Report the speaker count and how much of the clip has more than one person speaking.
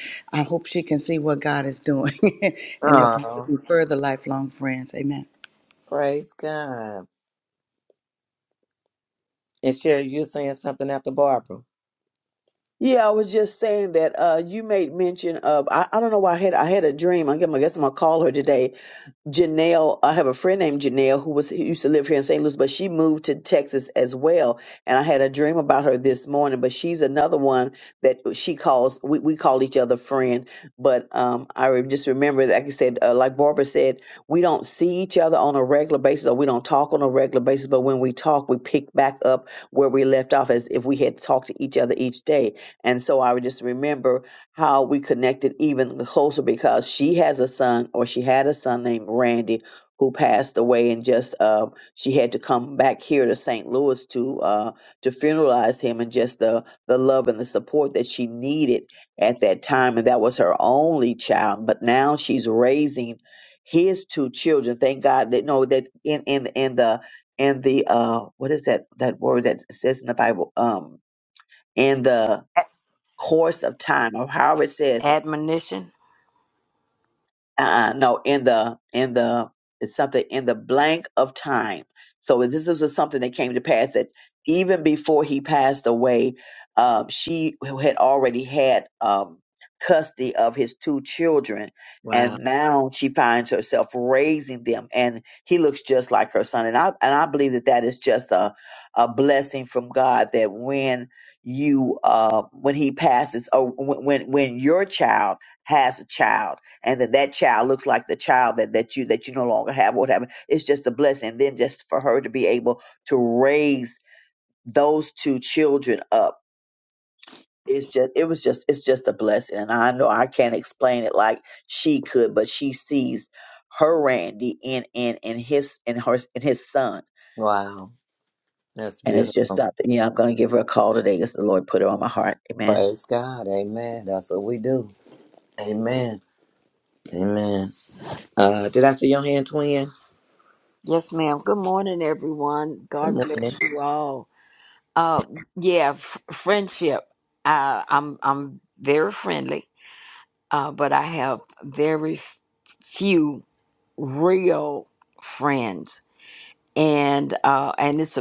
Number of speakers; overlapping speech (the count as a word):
four, about 1%